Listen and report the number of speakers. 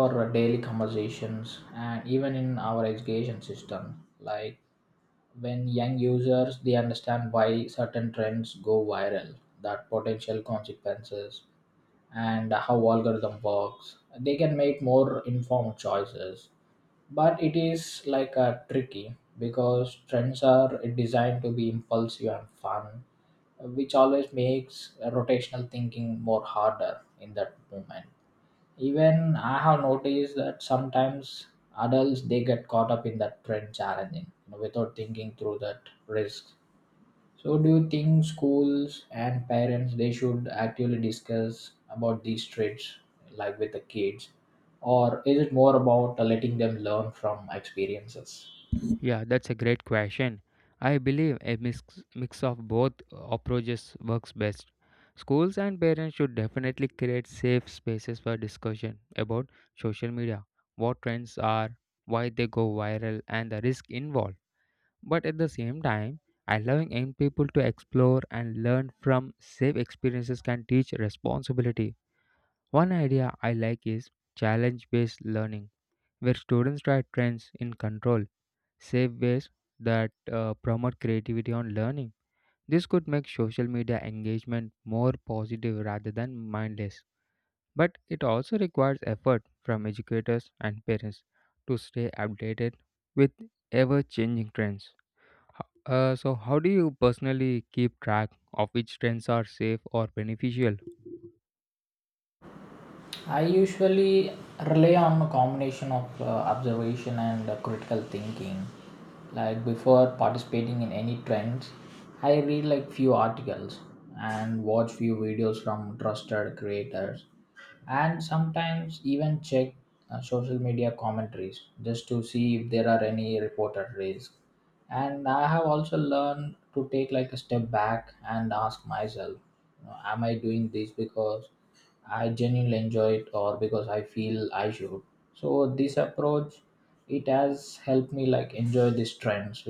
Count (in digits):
2